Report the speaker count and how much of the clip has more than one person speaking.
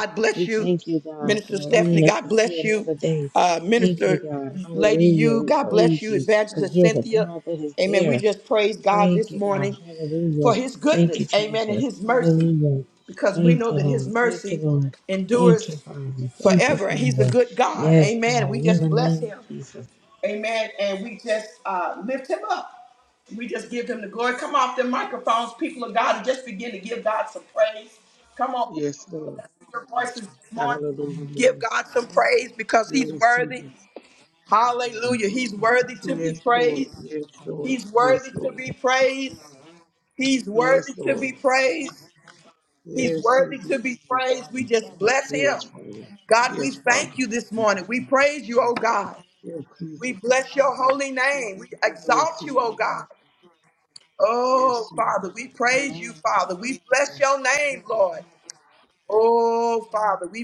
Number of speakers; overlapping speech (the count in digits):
3, about 32%